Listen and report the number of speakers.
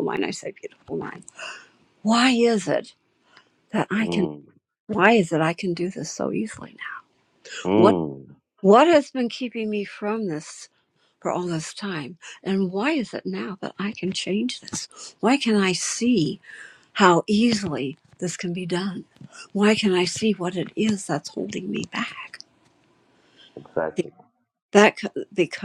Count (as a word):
two